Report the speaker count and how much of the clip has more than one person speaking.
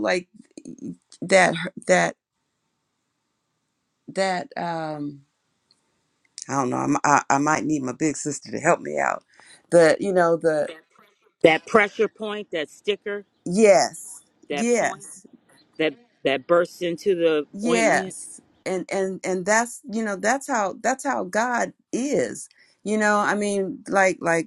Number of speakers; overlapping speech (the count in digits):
2, about 4%